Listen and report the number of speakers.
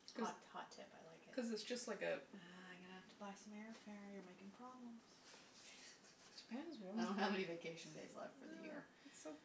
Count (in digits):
2